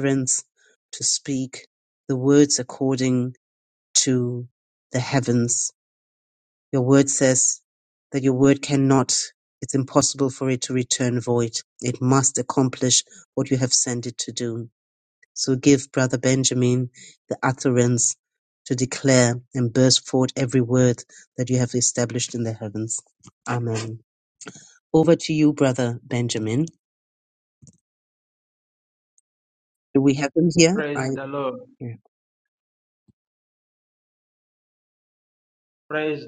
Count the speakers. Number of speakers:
2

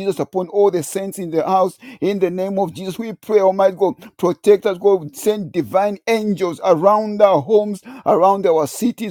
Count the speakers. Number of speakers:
1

